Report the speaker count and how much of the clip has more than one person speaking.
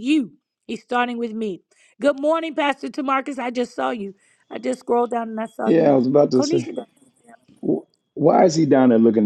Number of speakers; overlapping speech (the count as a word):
two, about 6%